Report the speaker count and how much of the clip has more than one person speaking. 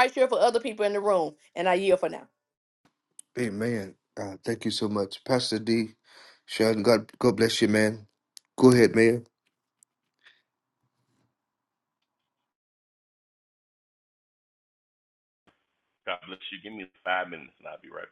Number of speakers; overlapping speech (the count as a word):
three, no overlap